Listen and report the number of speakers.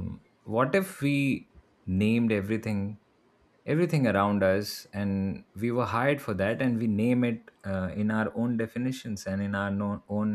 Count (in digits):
1